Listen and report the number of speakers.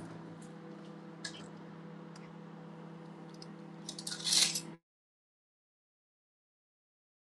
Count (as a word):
zero